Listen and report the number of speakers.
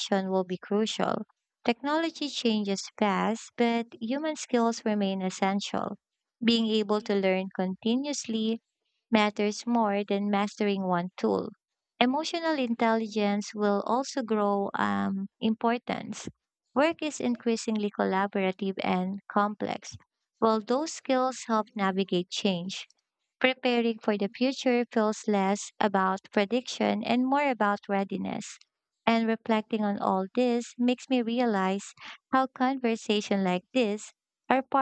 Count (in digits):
1